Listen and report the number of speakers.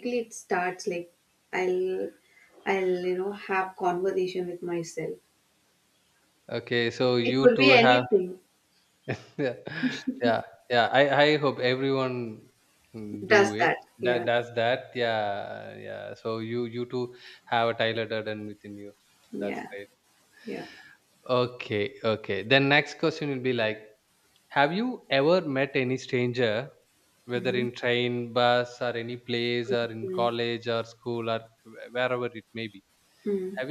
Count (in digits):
2